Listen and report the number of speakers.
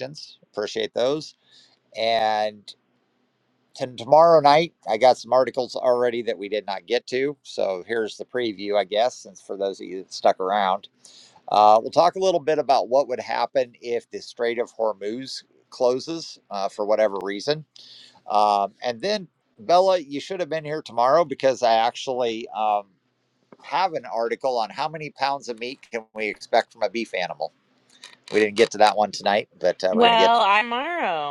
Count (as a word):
two